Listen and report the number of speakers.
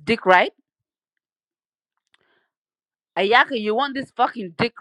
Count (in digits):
1